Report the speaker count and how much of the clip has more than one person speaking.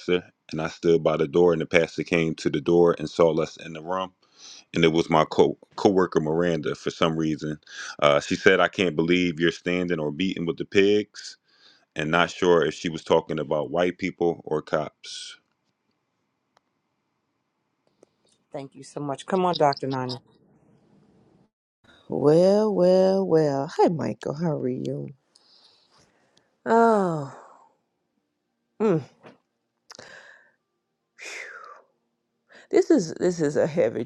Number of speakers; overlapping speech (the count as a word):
three, no overlap